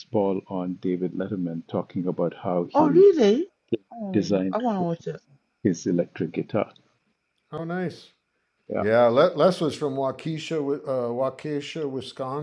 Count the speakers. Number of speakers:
3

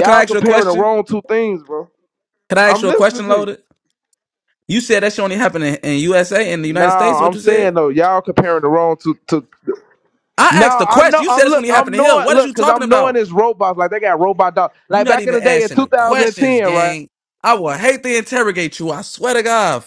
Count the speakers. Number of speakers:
2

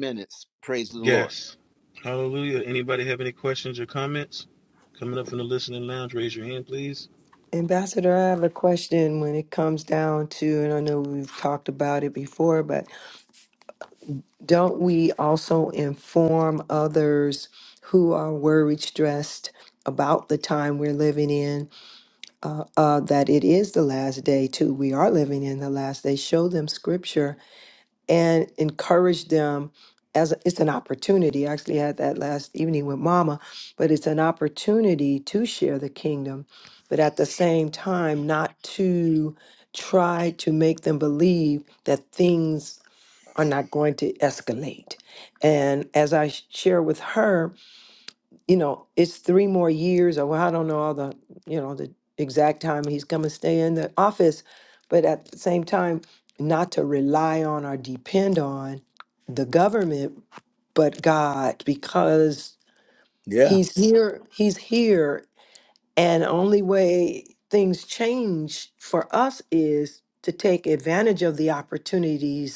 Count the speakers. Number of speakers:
3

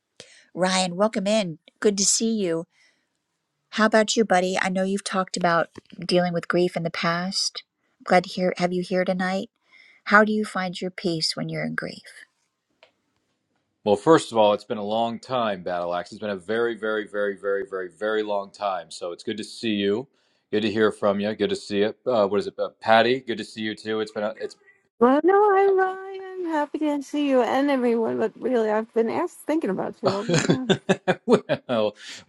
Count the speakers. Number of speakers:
3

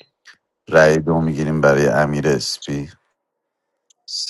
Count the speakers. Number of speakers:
1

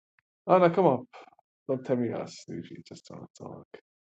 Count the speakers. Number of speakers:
1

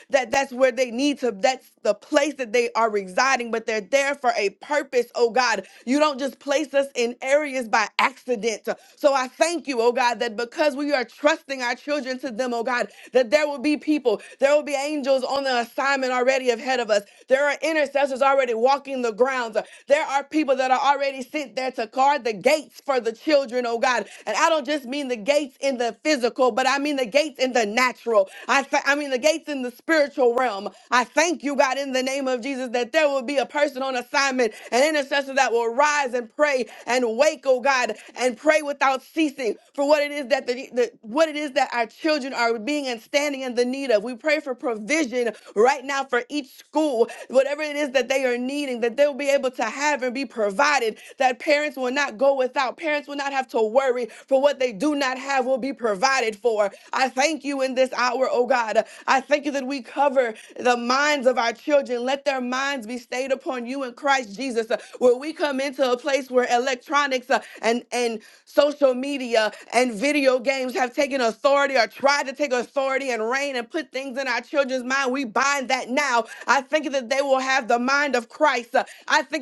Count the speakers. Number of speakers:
1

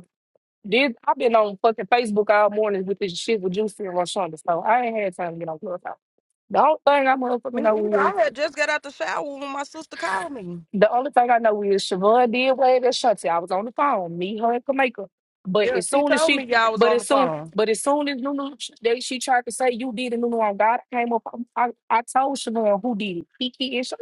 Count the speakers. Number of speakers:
2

